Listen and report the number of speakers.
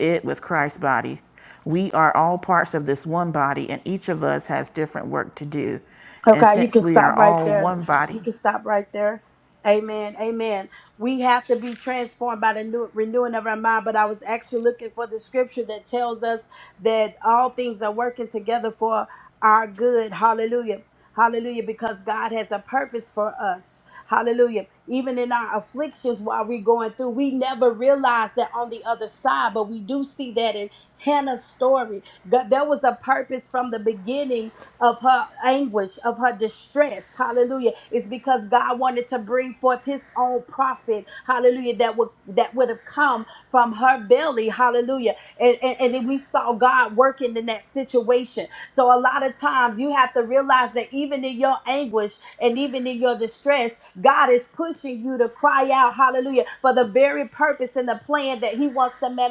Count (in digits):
2